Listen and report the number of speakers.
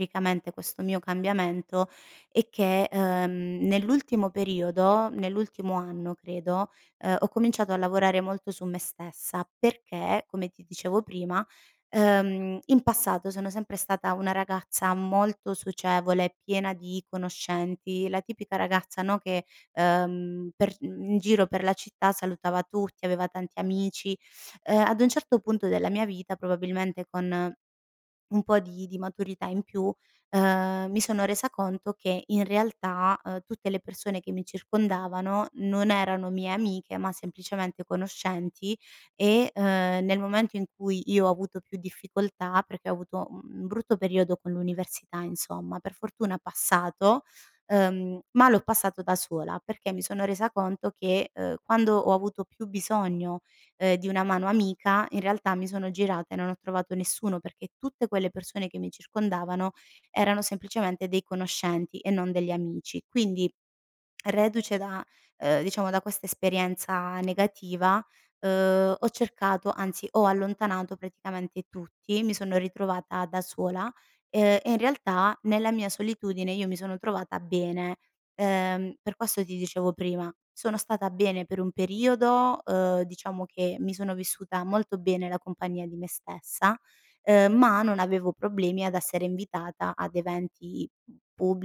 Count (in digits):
1